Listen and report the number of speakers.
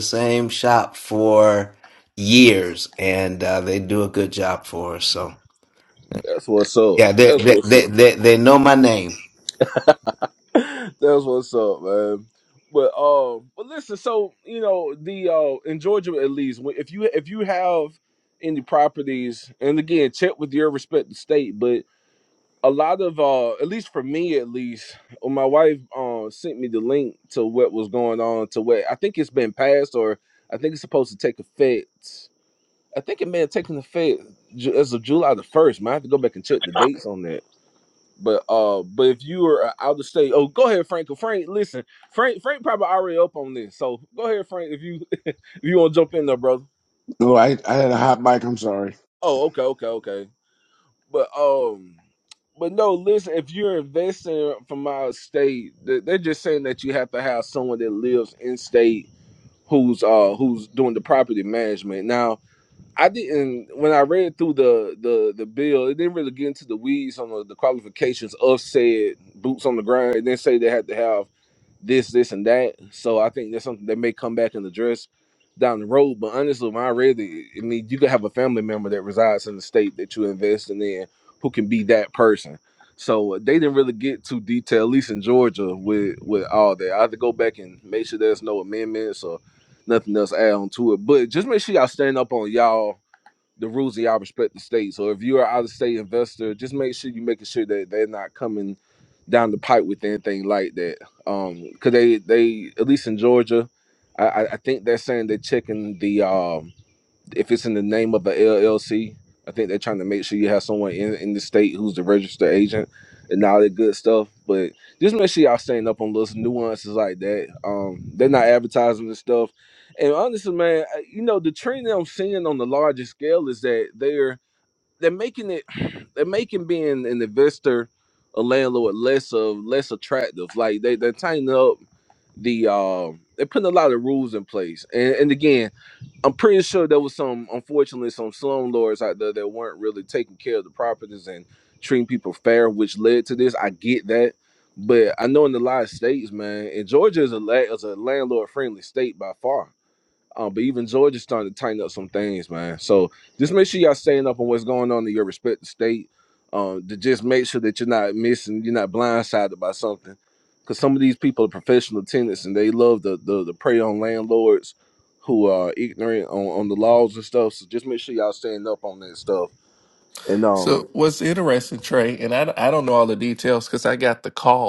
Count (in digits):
4